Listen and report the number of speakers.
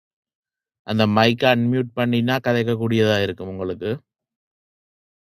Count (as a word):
one